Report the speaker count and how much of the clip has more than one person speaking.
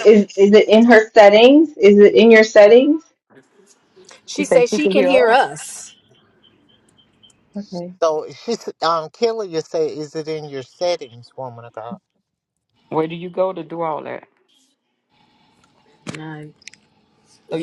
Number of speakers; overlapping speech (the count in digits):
4, about 6%